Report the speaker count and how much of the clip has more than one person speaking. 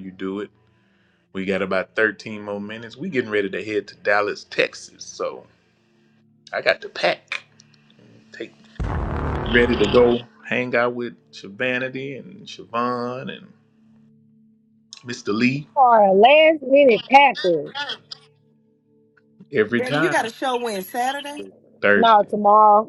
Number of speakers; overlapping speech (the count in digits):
3, about 3%